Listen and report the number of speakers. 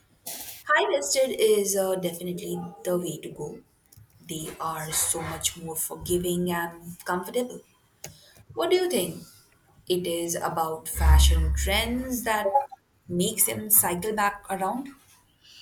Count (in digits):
1